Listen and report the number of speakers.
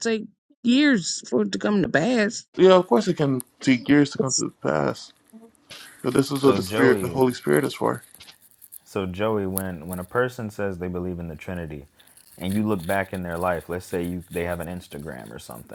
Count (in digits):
3